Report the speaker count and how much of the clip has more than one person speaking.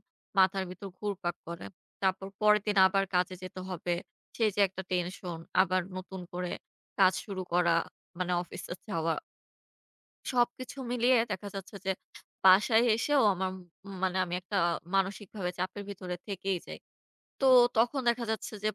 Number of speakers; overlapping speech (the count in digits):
1, no overlap